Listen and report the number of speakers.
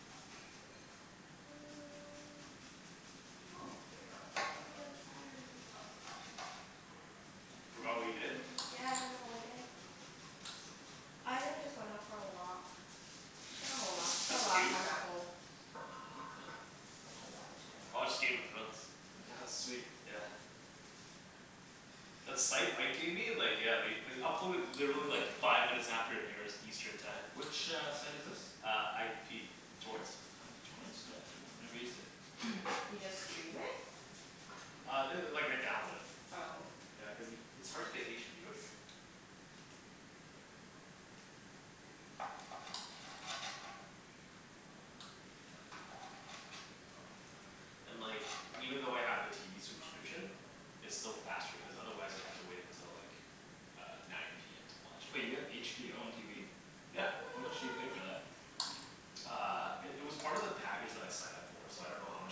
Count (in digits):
3